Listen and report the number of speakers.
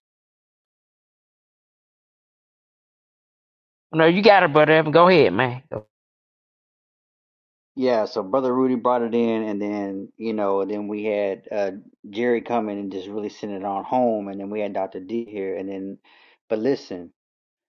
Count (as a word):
two